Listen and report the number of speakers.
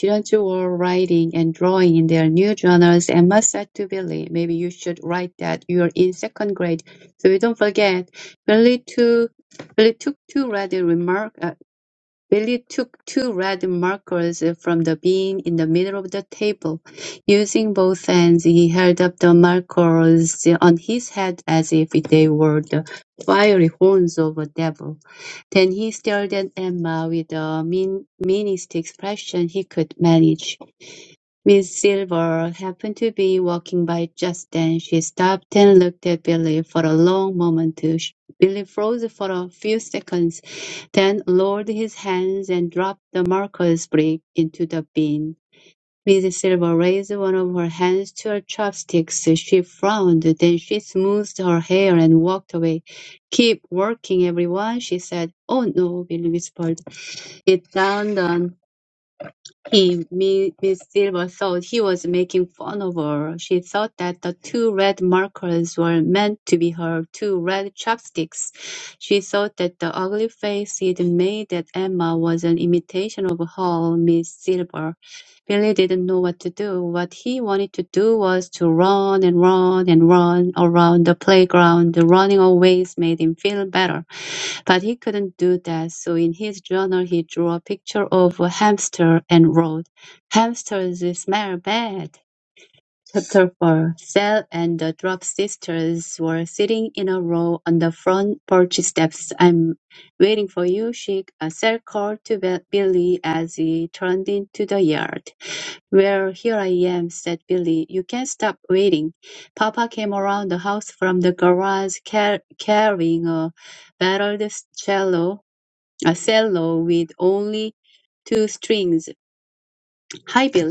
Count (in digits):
1